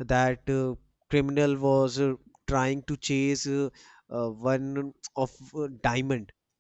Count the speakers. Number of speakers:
1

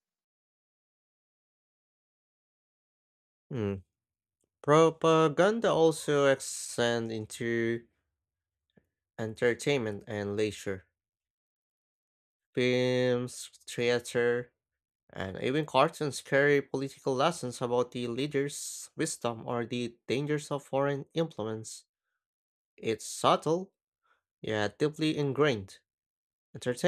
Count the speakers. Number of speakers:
1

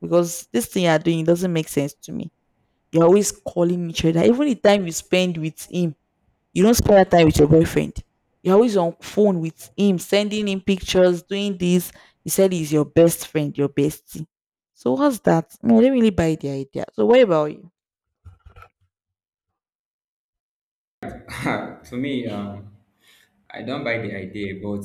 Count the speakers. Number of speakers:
2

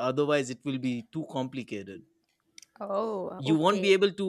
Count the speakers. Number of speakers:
2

